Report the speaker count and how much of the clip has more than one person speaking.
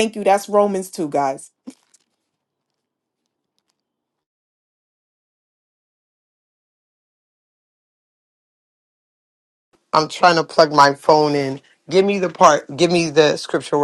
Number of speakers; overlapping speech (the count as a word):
two, no overlap